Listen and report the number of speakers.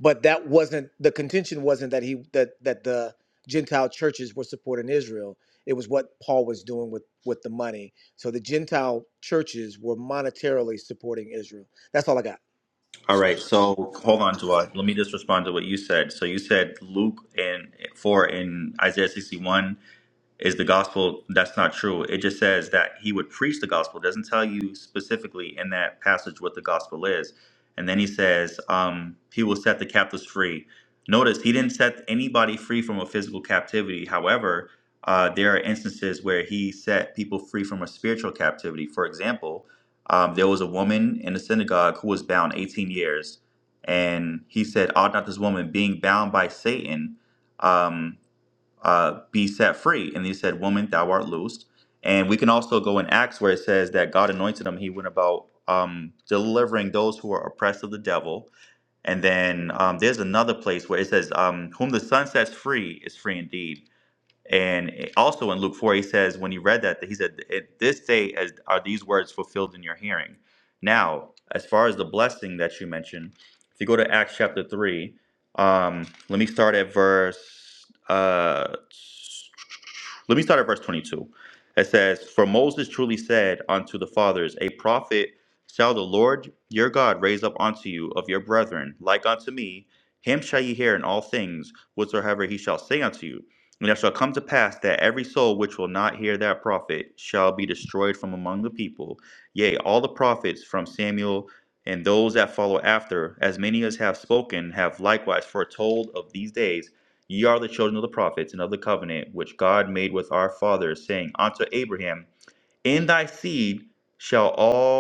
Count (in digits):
2